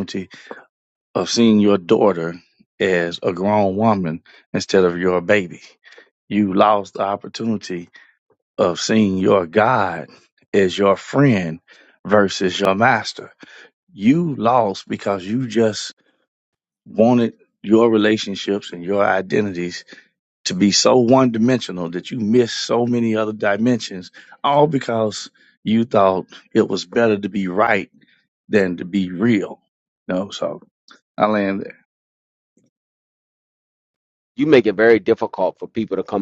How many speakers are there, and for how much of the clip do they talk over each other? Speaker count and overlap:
2, no overlap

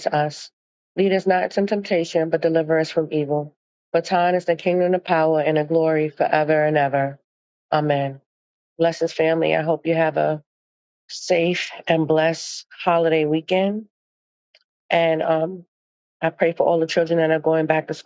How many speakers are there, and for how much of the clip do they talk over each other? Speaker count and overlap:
1, no overlap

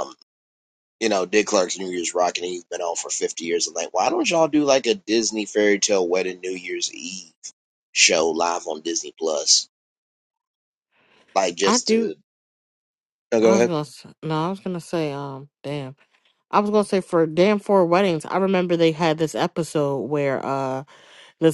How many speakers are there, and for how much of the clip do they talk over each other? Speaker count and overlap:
2, about 3%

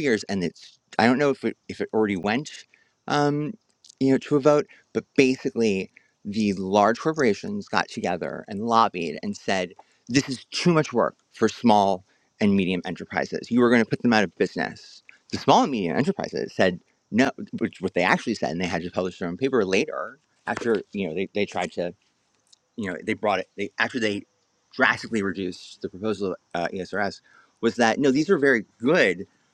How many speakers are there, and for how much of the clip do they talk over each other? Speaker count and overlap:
1, no overlap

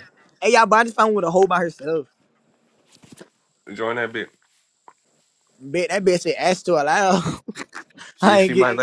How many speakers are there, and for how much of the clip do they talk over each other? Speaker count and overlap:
2, about 5%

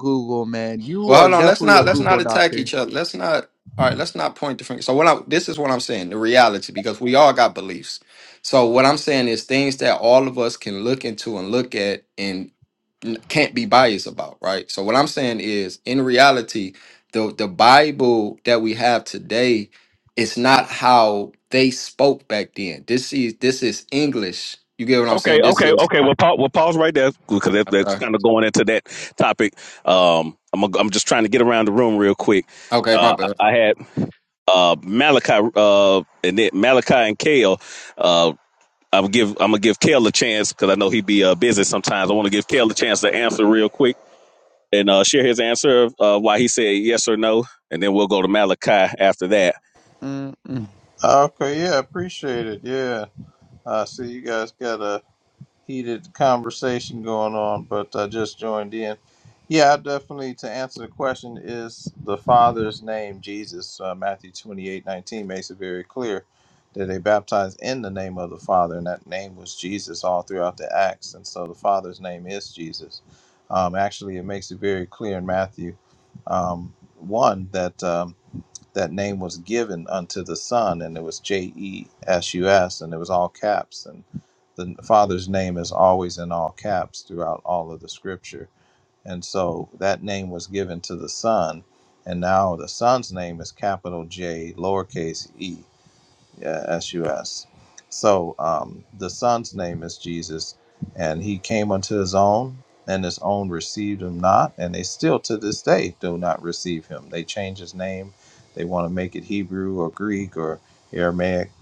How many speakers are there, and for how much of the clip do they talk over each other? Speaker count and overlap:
4, about 3%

